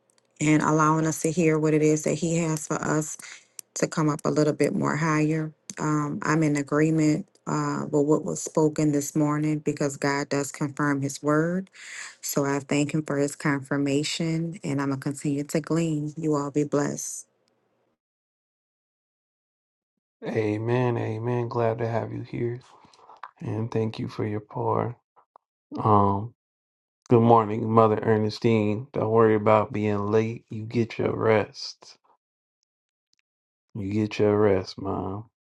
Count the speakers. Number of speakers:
2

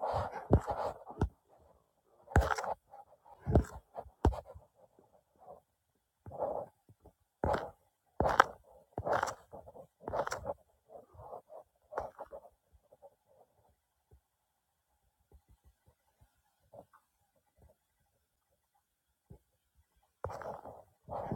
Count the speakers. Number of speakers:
0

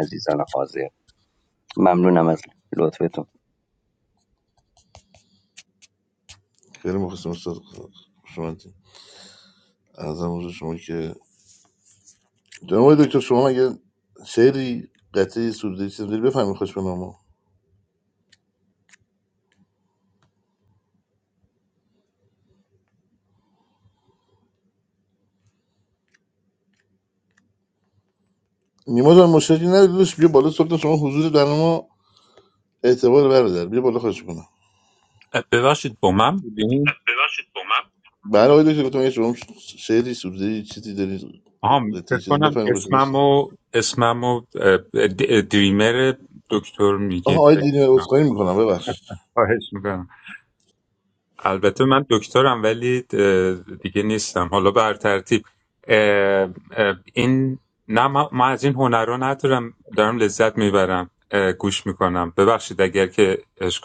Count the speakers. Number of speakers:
3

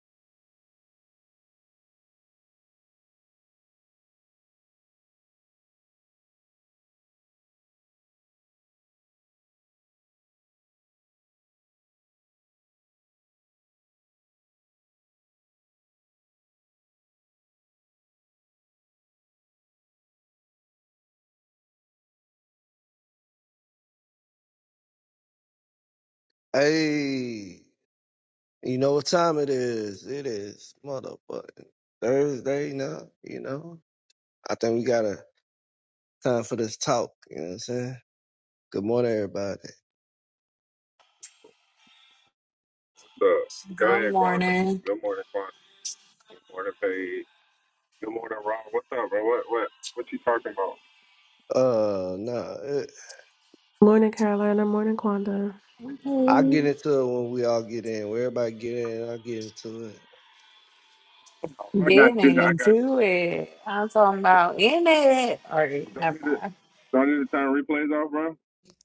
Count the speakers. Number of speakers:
4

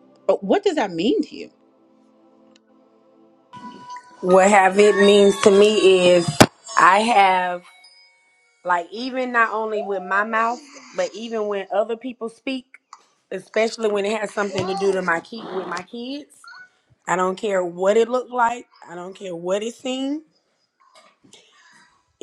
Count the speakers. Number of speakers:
2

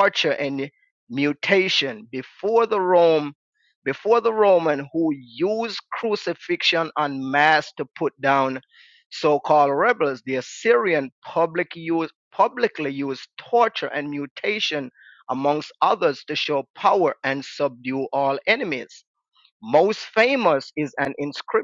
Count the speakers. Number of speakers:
1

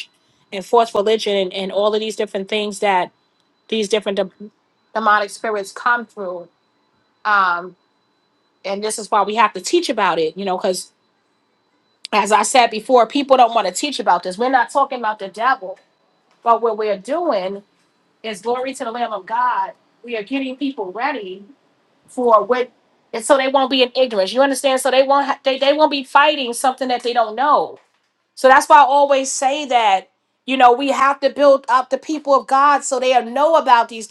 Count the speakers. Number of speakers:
1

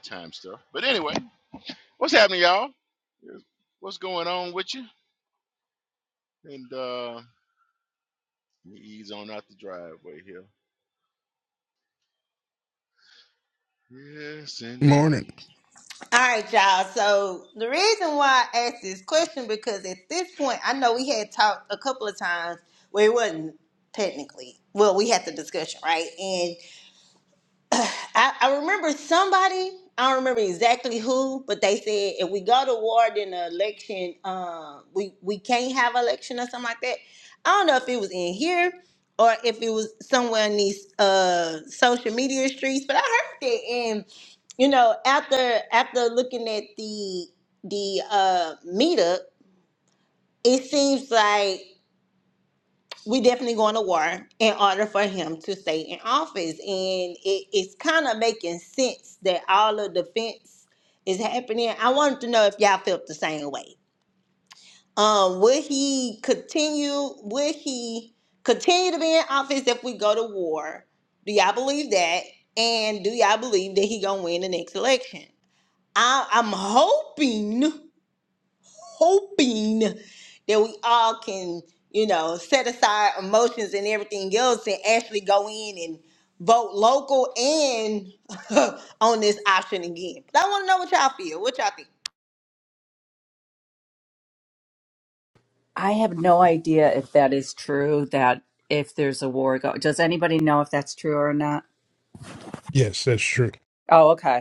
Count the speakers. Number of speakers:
4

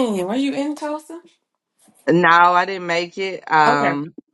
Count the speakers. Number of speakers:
2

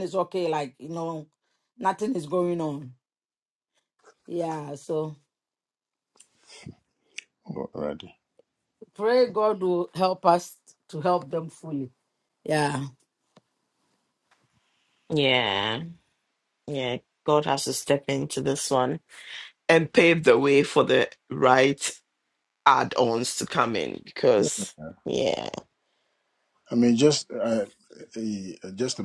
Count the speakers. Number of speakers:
3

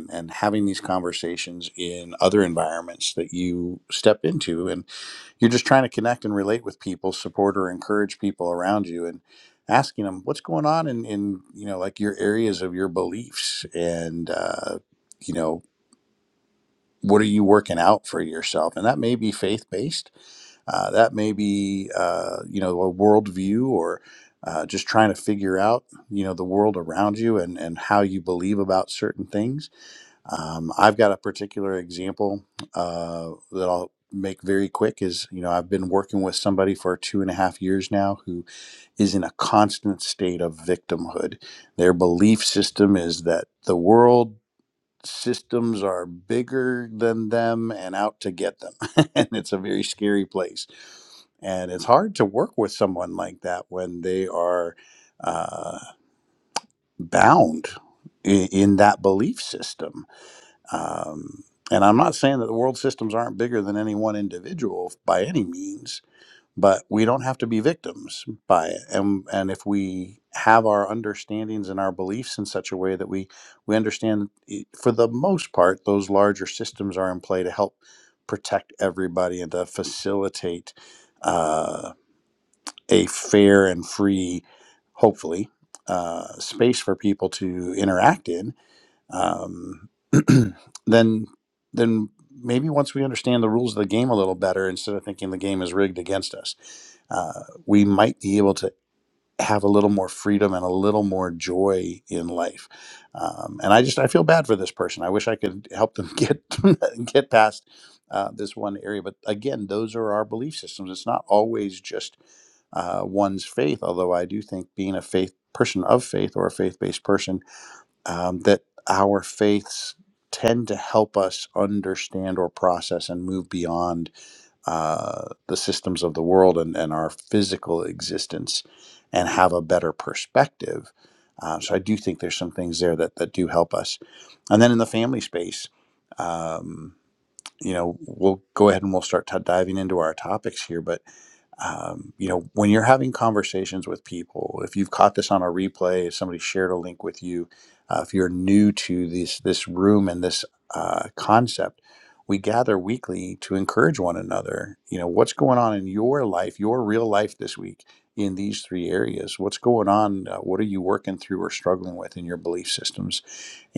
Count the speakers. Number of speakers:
1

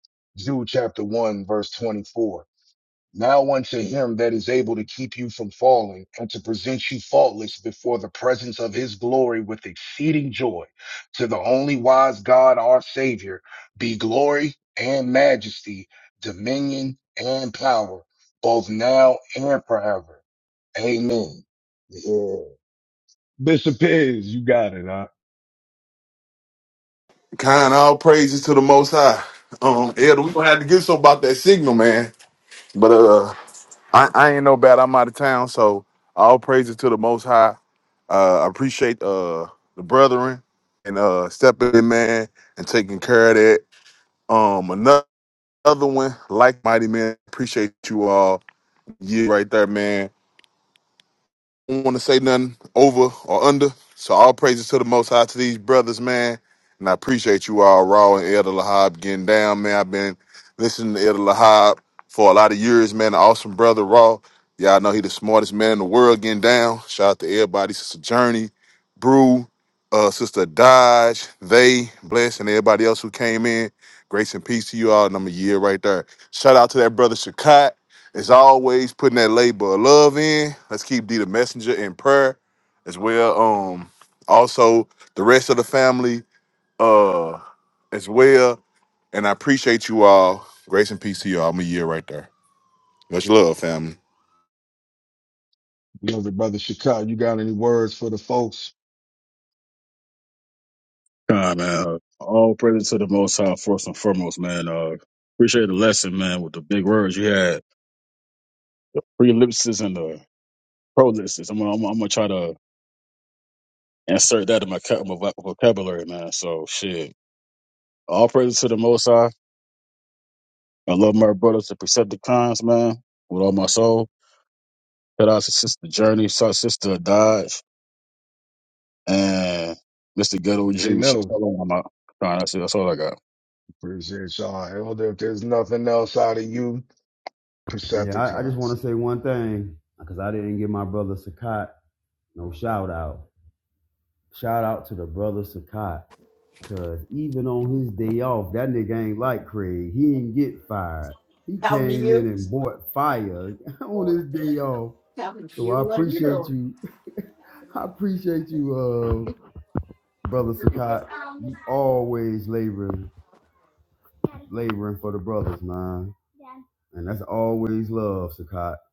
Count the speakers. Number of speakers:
4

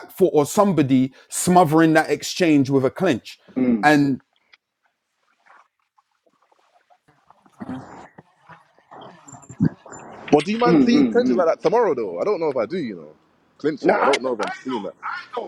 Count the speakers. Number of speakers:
3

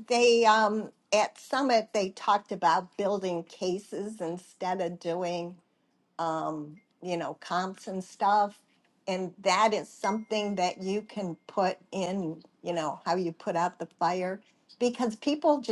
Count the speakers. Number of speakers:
1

